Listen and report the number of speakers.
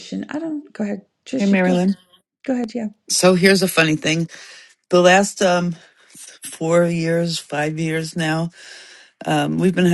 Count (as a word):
two